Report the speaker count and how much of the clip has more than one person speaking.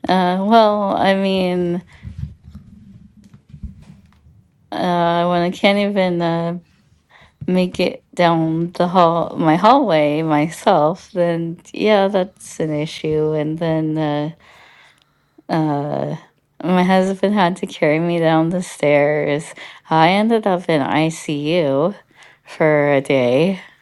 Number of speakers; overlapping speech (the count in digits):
1, no overlap